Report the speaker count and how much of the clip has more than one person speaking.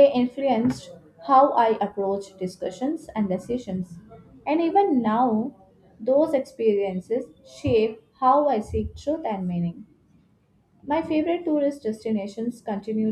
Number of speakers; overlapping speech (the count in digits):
1, no overlap